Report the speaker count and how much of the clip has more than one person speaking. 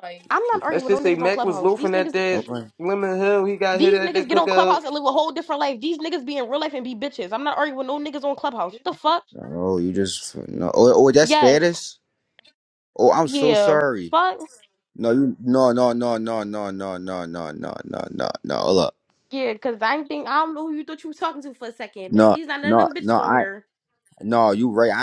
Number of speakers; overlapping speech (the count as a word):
three, about 21%